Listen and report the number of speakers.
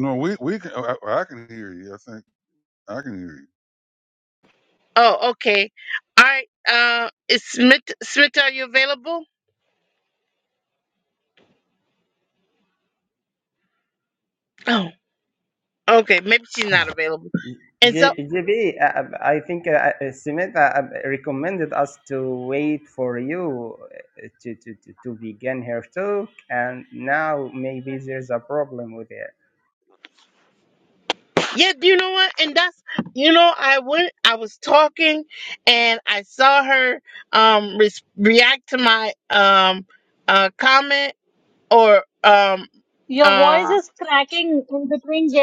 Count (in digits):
4